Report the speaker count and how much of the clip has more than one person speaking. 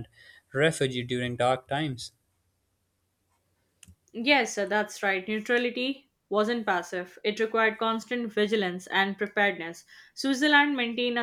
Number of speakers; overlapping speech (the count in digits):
2, no overlap